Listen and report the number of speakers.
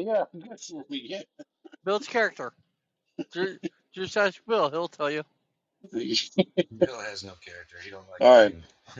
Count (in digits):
3